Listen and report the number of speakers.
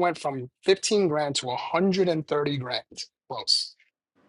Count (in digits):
1